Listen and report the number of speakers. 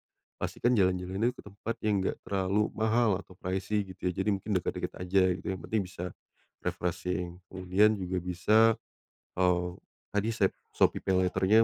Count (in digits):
1